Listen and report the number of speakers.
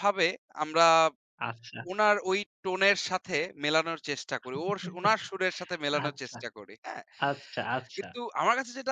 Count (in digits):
2